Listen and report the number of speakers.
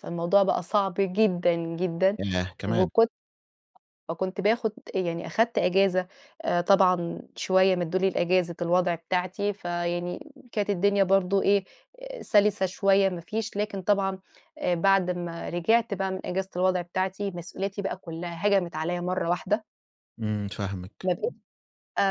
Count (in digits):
2